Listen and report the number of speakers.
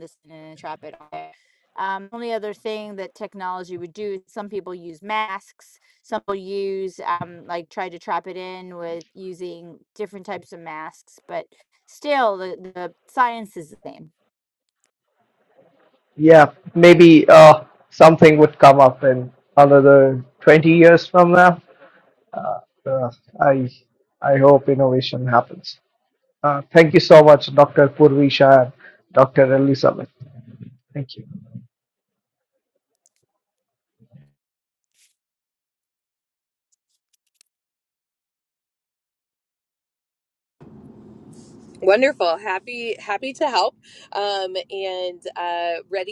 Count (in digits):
3